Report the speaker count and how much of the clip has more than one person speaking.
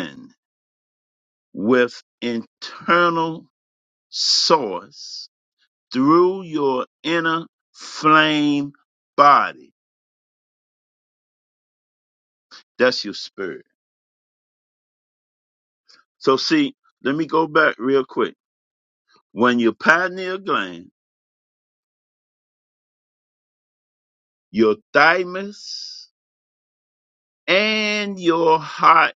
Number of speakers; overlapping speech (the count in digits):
1, no overlap